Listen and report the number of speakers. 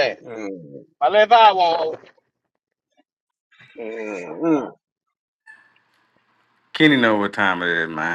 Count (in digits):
3